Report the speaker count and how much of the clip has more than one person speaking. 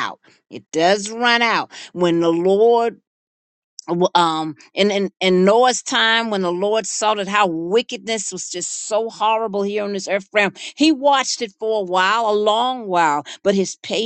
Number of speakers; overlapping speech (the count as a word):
one, no overlap